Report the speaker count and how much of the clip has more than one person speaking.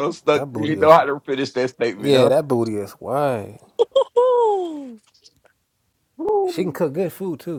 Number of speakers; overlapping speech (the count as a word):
three, about 17%